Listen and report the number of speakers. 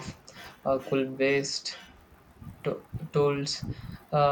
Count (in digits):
1